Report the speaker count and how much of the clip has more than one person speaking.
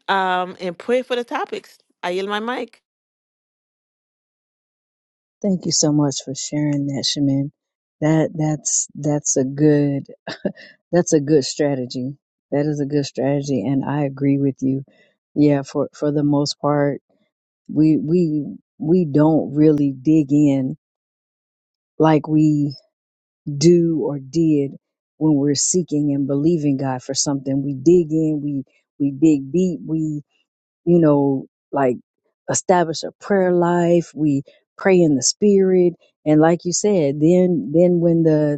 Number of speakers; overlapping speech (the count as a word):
two, no overlap